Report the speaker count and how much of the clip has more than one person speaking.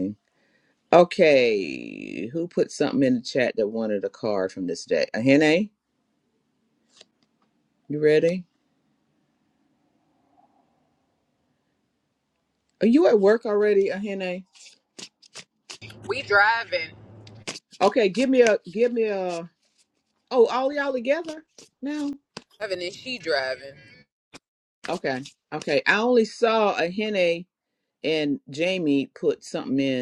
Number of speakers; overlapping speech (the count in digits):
2, no overlap